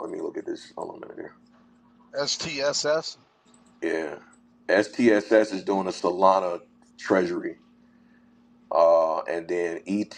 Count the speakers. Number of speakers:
2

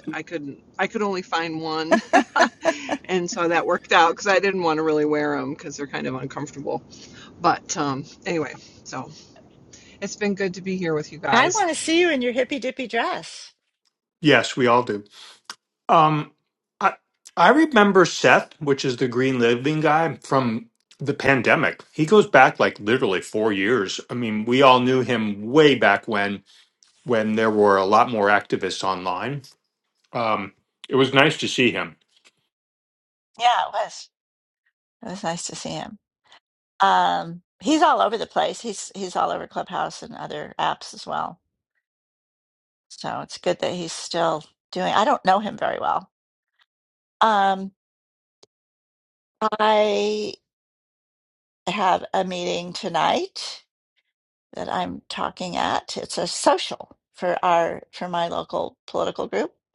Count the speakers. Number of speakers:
3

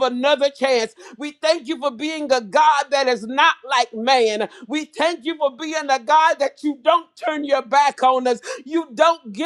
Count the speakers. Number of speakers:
1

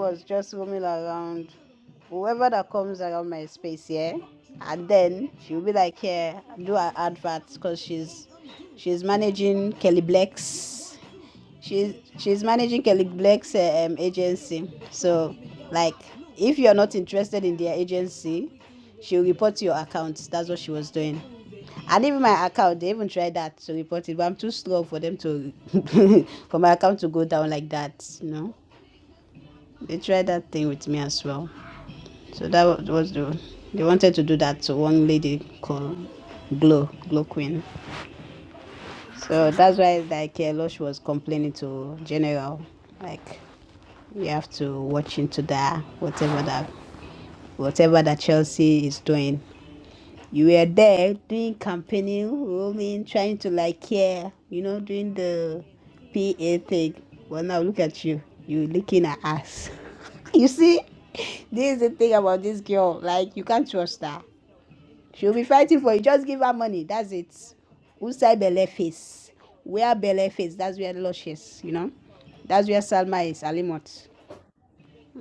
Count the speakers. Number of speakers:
1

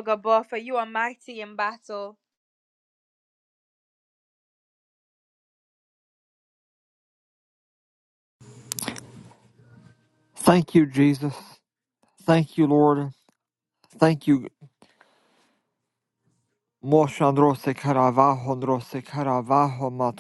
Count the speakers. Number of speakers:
2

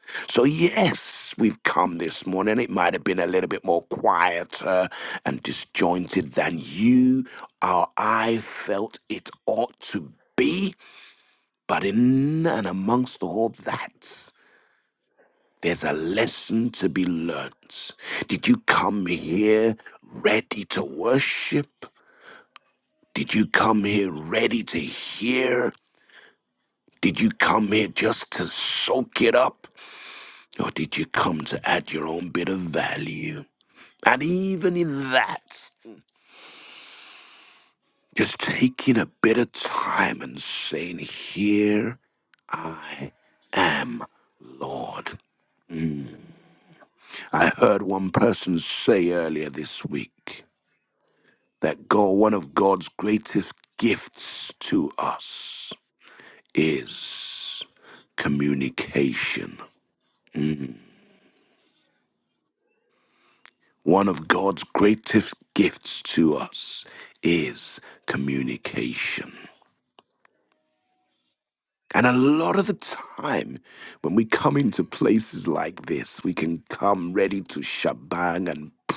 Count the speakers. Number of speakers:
1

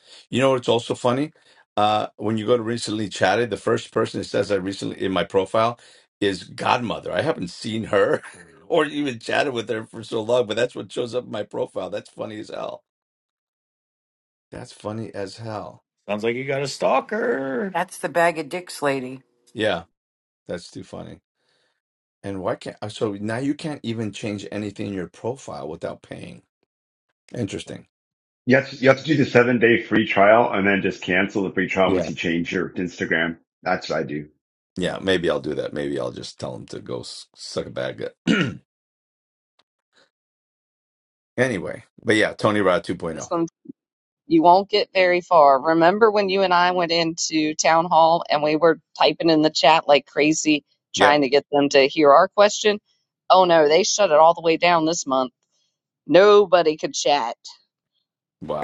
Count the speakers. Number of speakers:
5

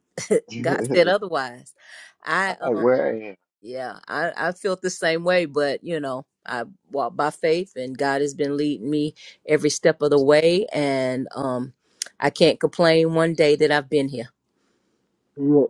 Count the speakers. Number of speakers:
2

